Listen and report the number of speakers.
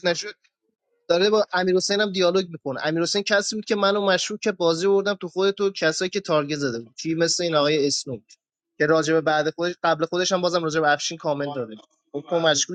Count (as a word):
one